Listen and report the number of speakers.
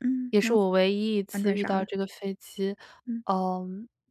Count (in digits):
2